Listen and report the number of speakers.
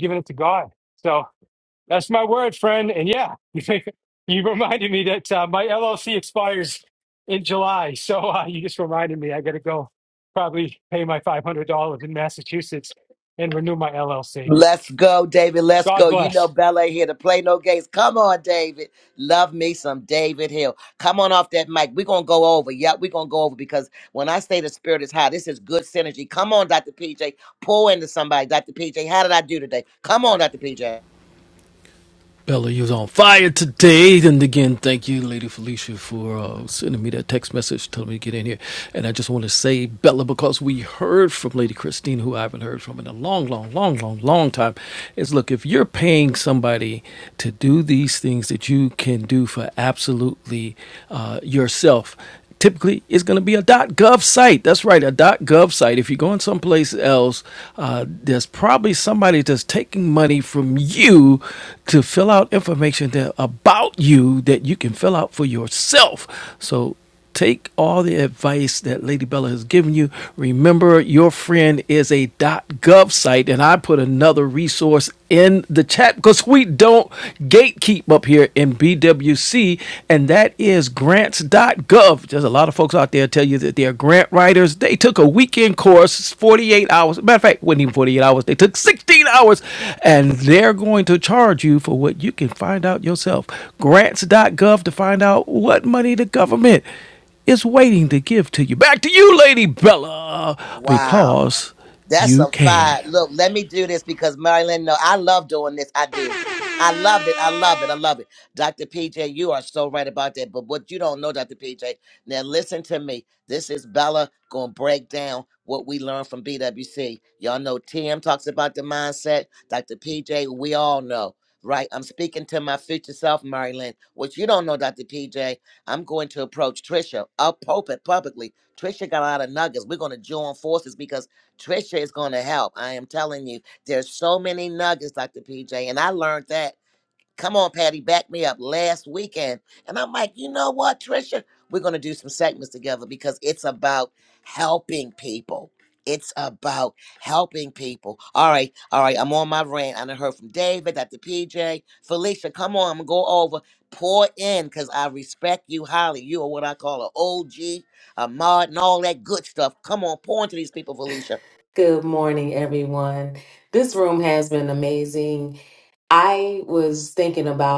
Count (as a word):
four